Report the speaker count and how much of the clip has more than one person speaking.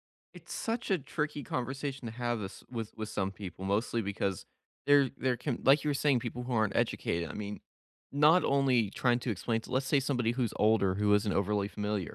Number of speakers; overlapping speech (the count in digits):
1, no overlap